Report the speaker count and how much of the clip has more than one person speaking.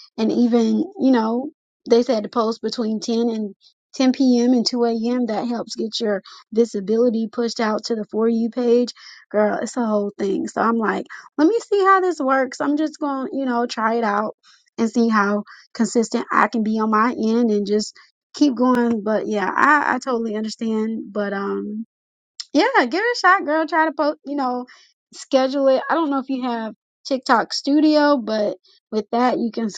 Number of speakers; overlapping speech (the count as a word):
one, no overlap